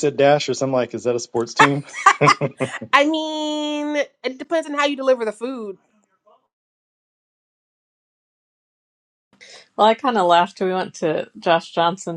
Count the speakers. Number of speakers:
3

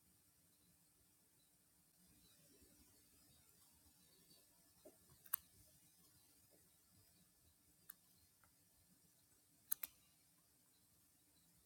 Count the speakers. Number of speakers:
0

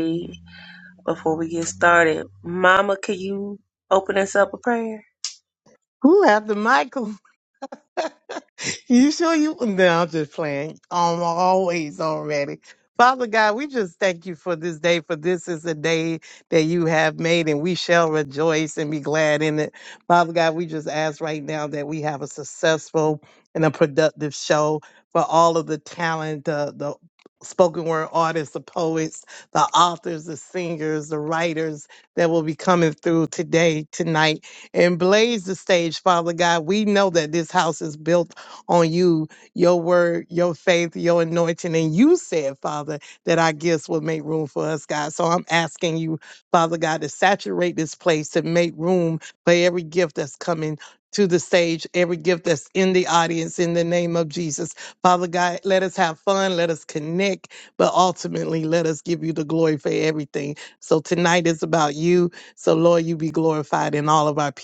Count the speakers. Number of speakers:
2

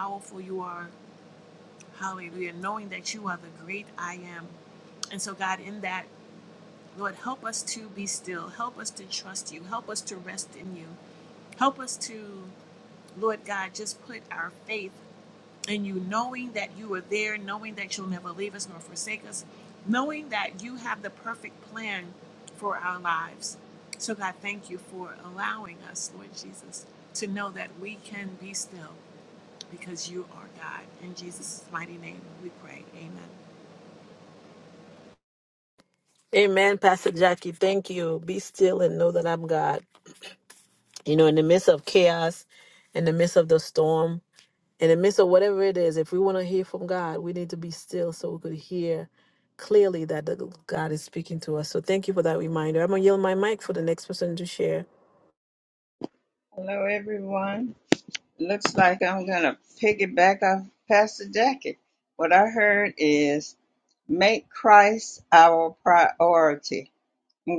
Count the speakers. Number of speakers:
3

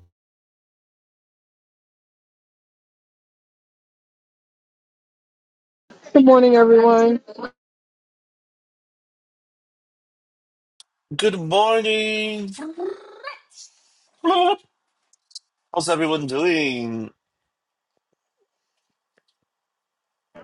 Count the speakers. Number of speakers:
2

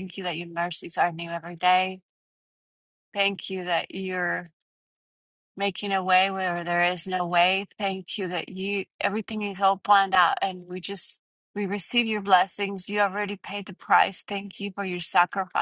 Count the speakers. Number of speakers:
1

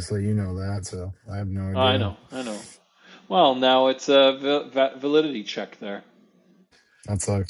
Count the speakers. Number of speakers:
2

